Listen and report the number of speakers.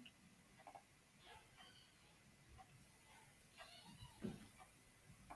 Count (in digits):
0